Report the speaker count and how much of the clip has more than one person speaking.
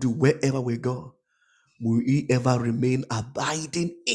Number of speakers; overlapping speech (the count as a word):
one, no overlap